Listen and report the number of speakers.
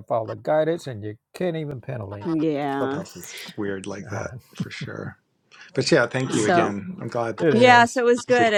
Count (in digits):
3